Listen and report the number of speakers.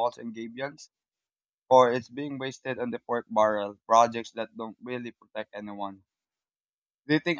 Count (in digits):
1